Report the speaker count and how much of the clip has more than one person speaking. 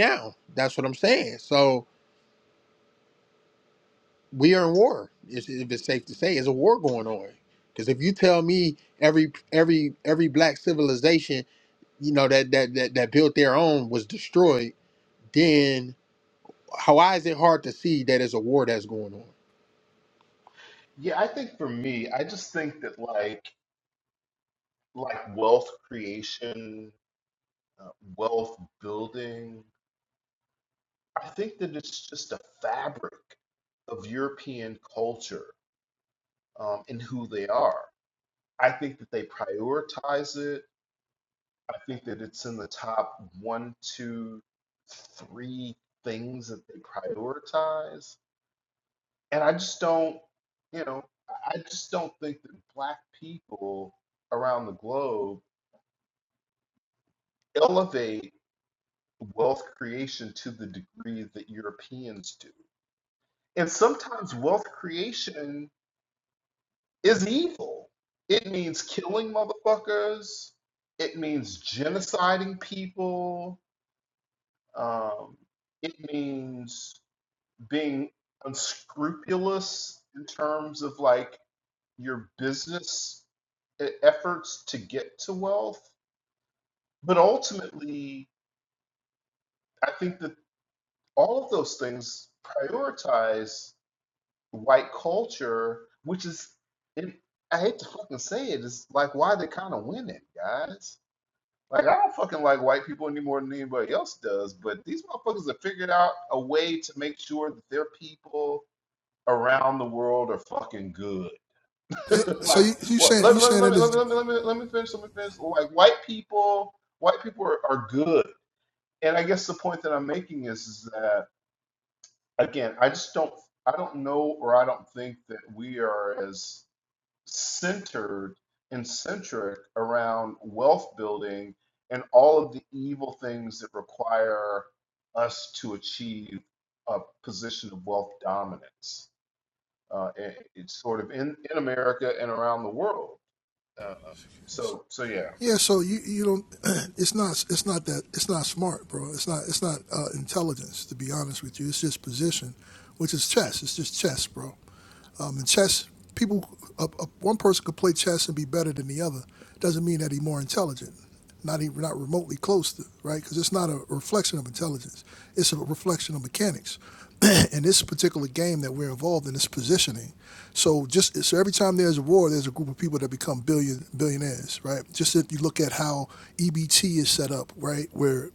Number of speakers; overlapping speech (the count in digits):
3, about 1%